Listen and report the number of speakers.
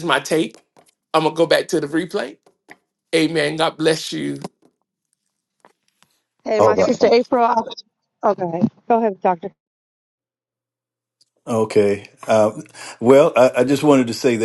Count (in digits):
3